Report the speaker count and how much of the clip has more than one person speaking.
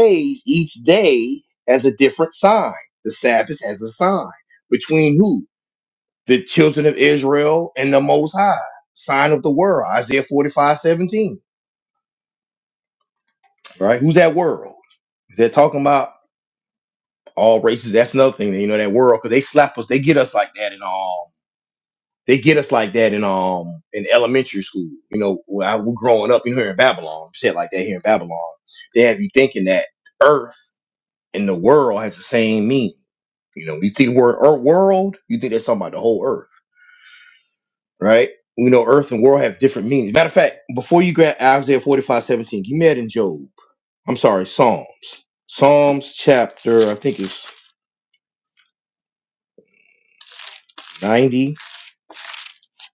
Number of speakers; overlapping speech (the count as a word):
one, no overlap